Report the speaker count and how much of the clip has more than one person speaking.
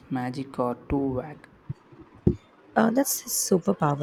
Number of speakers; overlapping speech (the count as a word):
two, no overlap